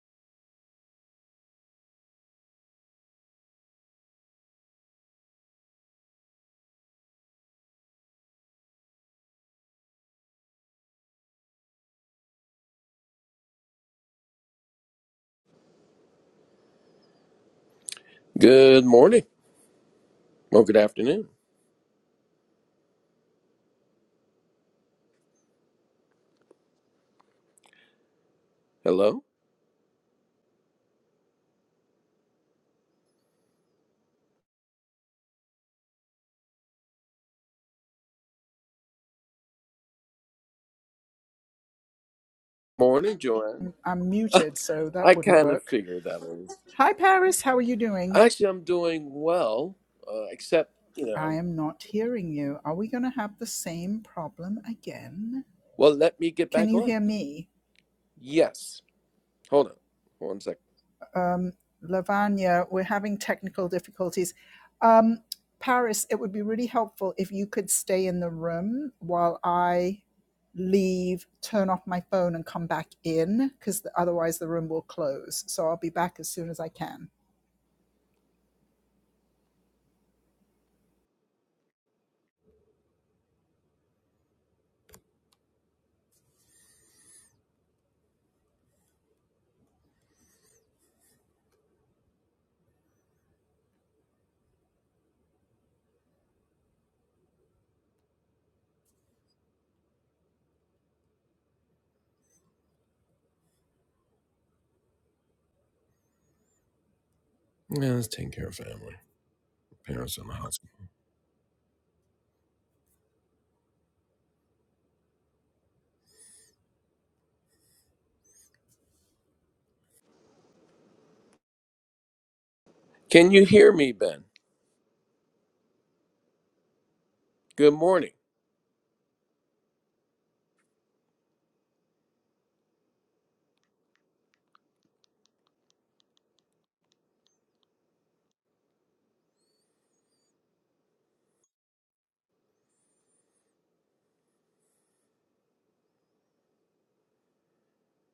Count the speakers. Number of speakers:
two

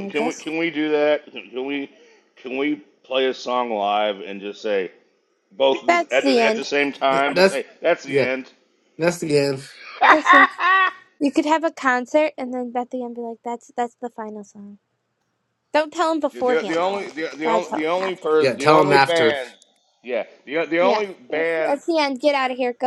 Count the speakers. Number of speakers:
three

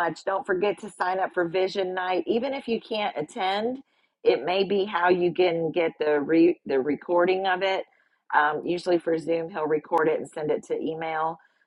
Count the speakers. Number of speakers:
one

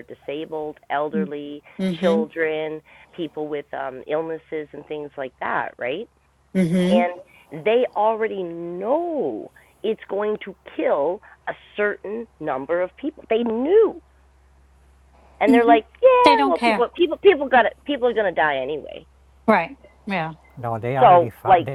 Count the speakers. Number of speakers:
three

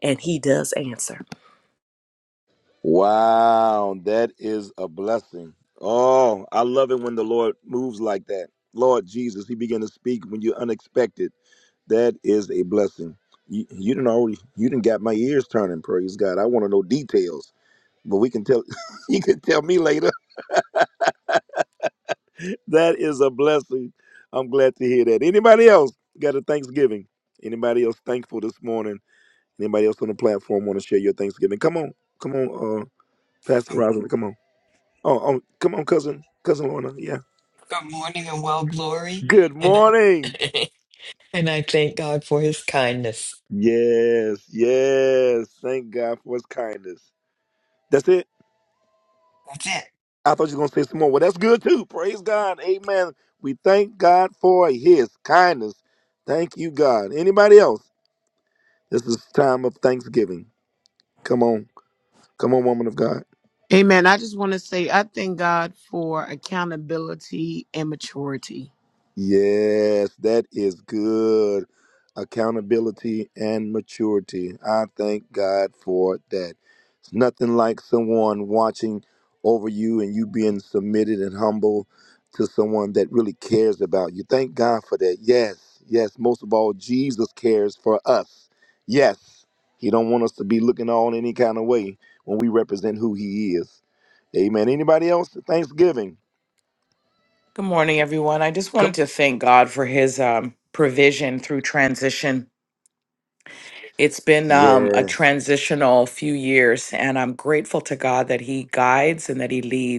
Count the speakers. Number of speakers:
five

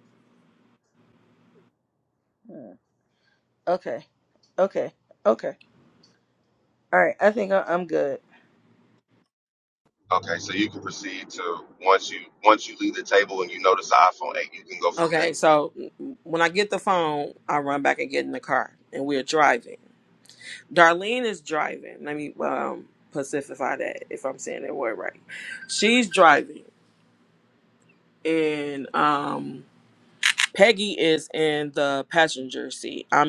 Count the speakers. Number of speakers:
three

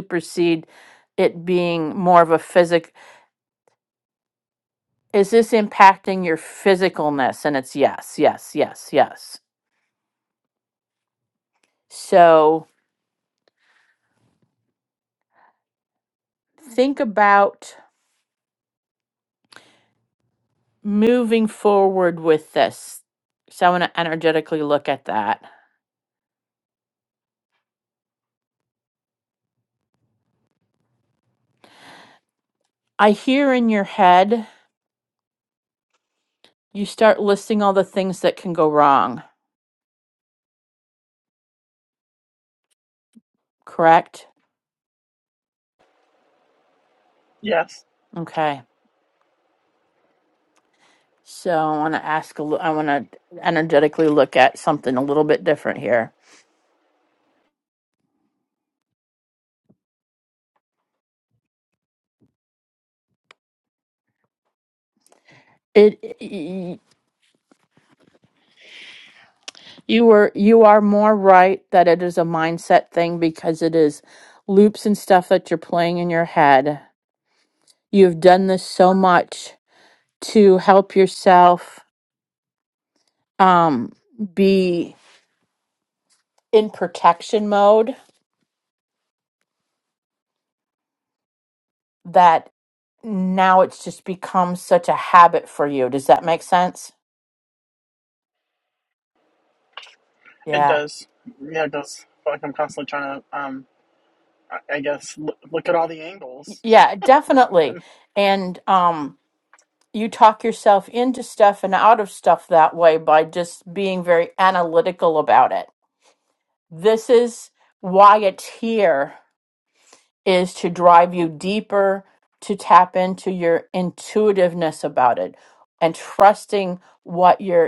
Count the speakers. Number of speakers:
two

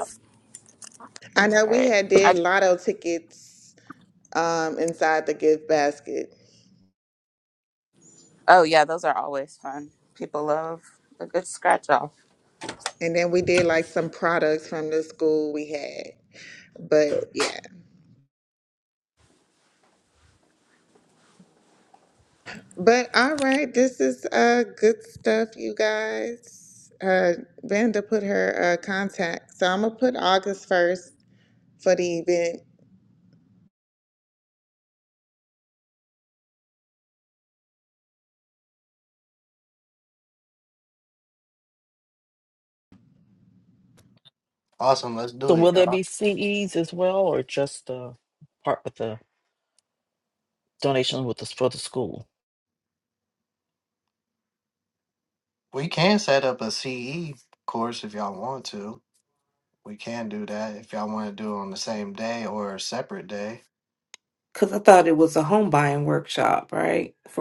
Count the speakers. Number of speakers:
five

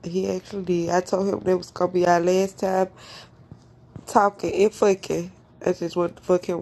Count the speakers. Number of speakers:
one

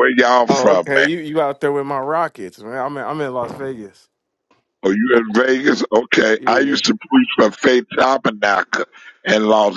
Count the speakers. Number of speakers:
two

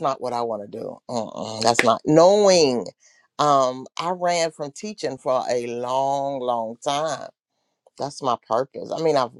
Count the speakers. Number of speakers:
one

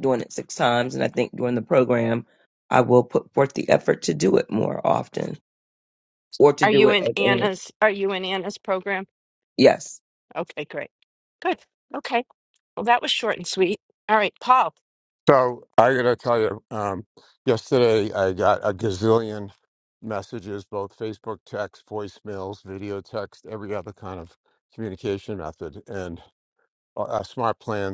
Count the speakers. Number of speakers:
three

